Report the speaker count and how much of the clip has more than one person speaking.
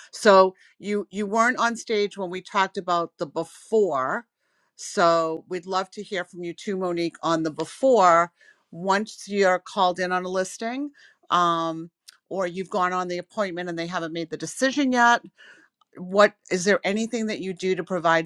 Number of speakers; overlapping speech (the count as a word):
one, no overlap